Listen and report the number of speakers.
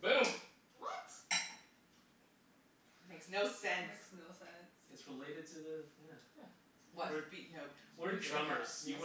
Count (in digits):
4